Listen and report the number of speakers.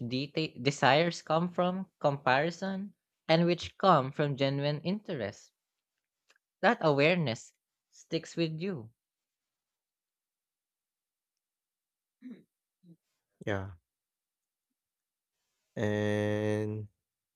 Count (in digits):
2